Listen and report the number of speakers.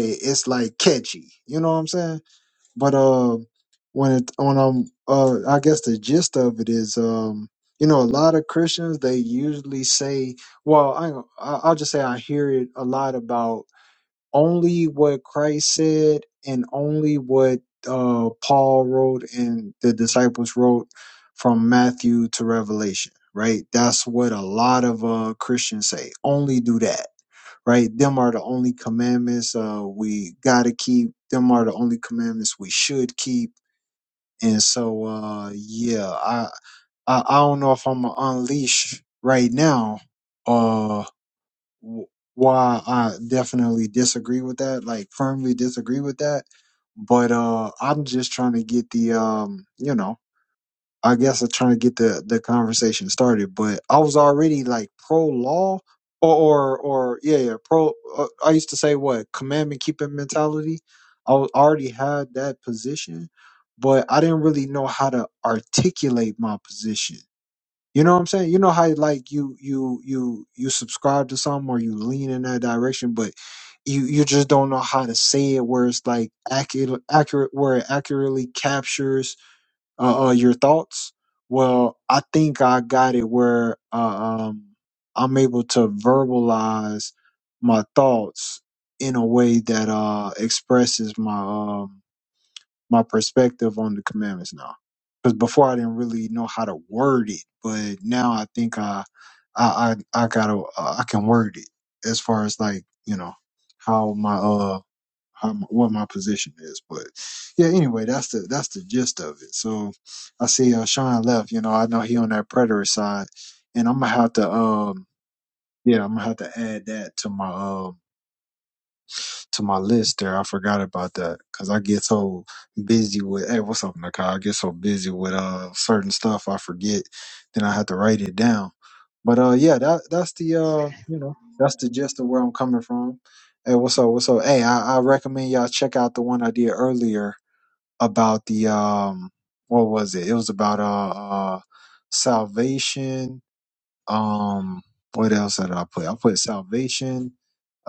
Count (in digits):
1